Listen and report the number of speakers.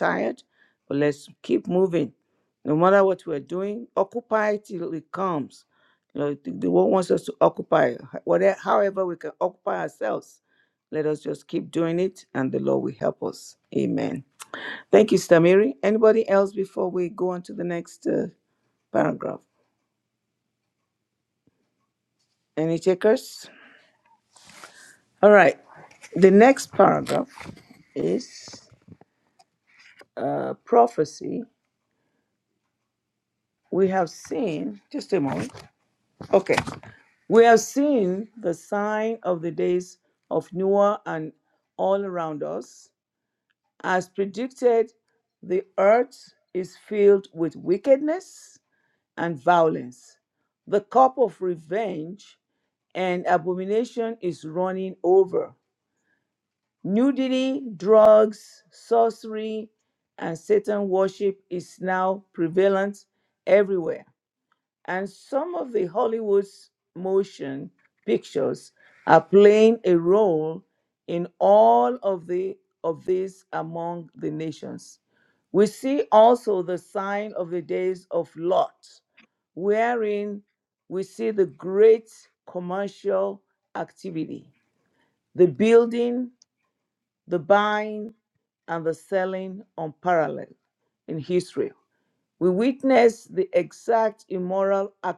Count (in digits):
1